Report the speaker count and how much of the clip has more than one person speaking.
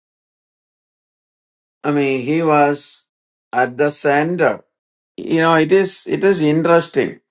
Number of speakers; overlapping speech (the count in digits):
1, no overlap